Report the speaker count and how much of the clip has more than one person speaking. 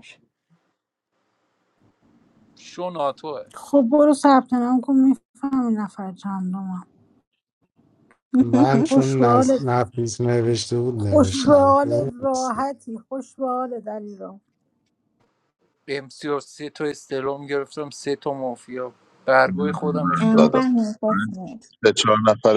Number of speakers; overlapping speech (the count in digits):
5, about 13%